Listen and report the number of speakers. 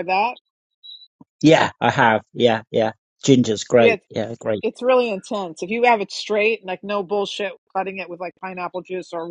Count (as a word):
two